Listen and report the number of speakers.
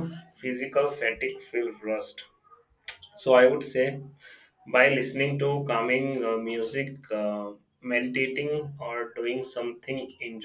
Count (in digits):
1